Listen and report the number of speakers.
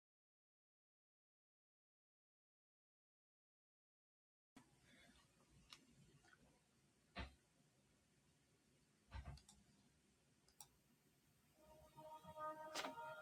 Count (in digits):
0